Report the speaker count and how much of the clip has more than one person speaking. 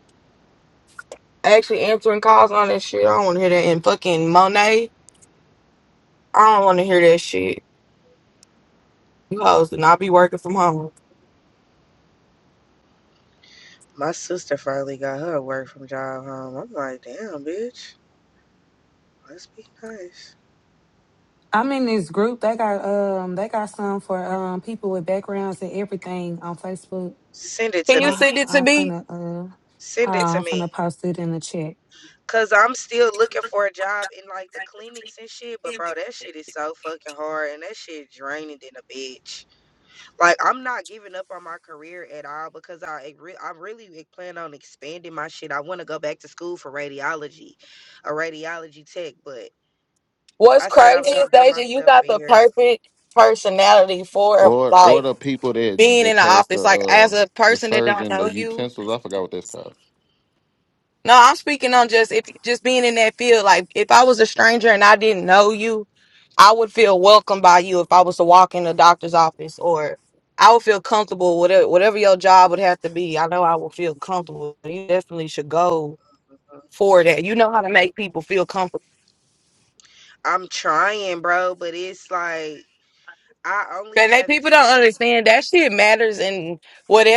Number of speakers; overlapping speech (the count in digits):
4, about 9%